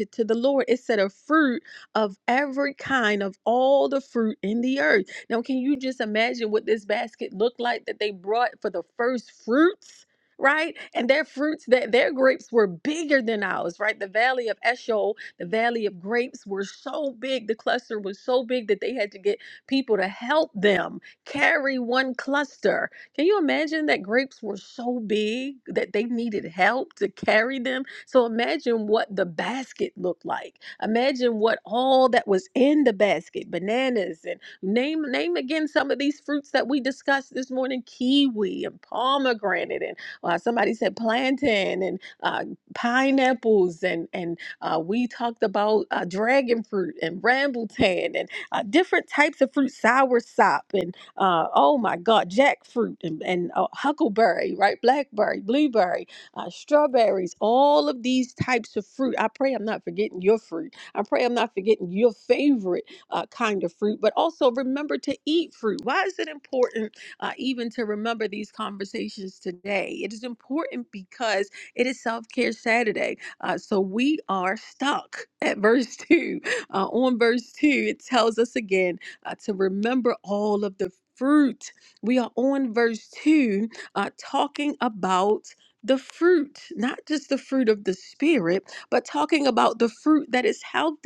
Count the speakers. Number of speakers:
1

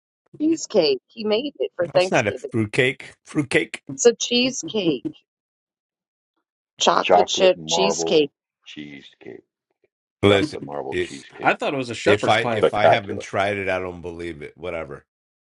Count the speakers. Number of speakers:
4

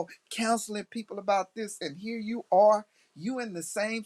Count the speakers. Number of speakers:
1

